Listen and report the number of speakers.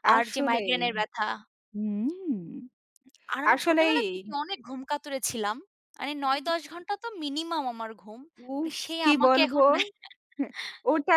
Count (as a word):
two